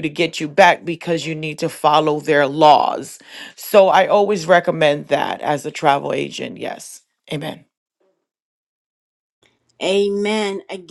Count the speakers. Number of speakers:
2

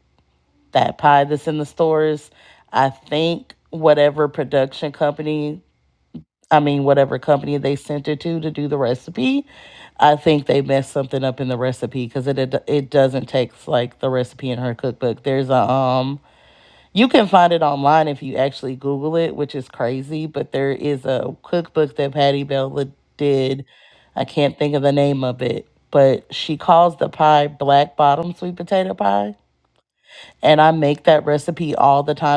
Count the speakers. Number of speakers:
1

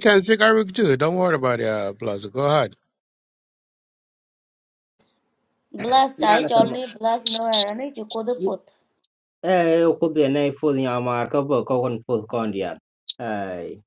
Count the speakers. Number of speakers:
3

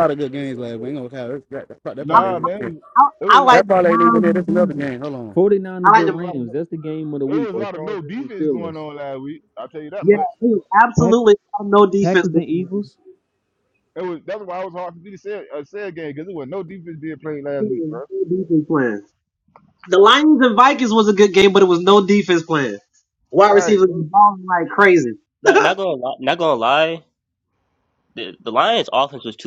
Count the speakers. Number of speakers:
5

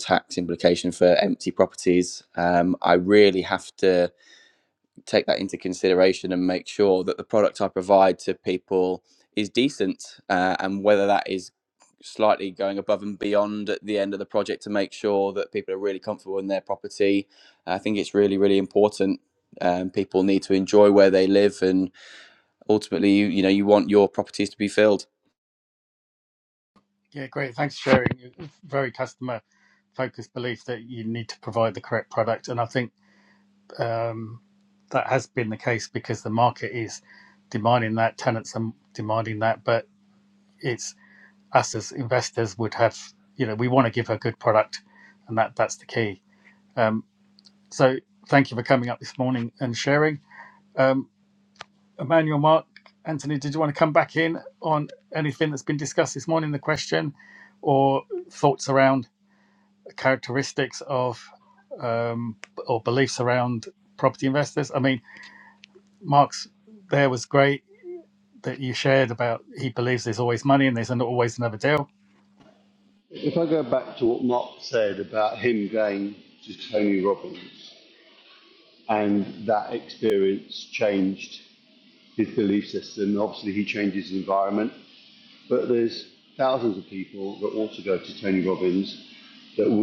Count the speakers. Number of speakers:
3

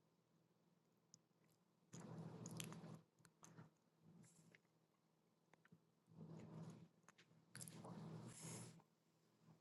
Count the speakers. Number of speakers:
0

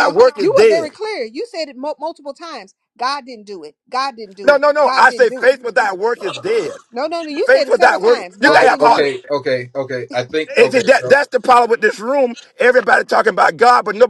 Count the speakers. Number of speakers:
3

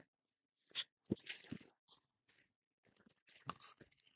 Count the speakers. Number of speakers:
0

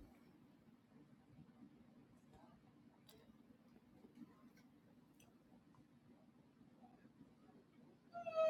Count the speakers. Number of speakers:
0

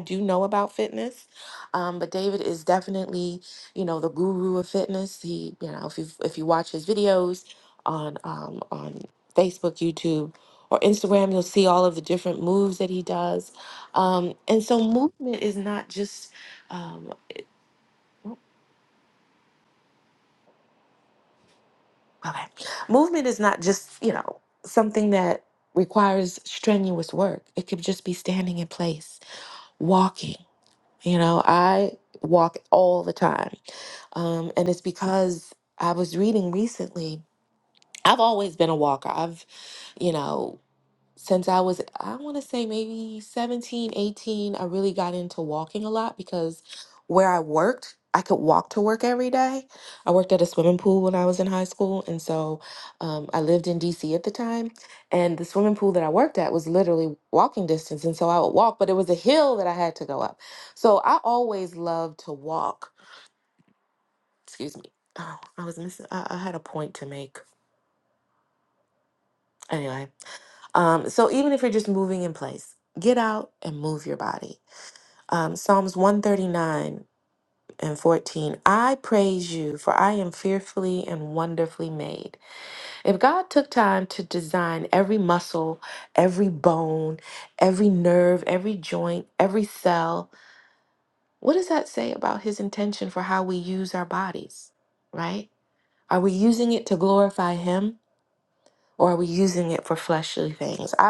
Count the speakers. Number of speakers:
1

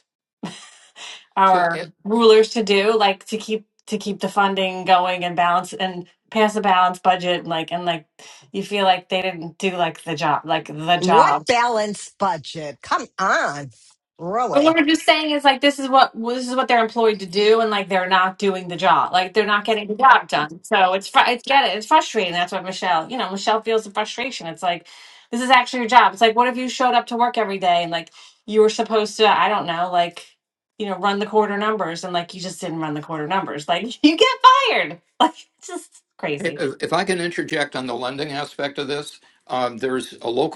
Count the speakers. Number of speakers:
3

